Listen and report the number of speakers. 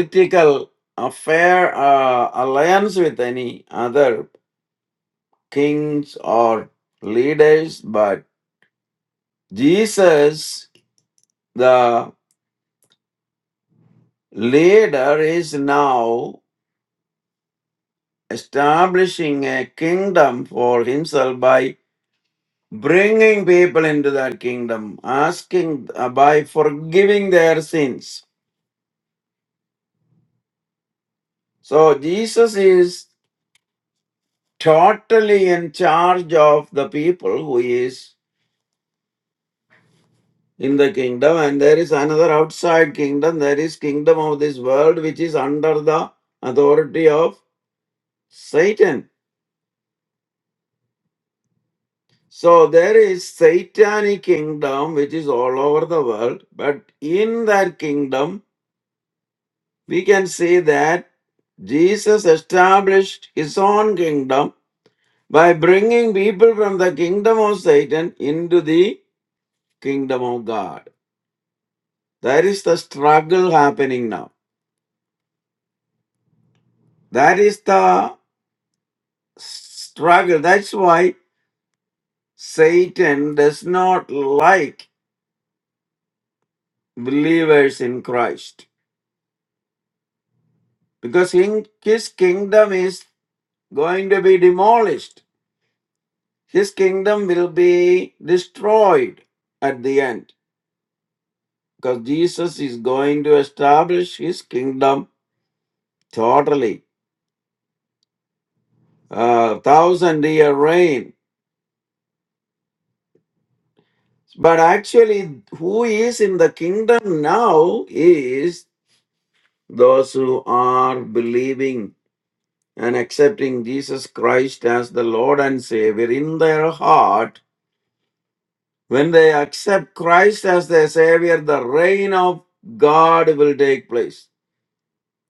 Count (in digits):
1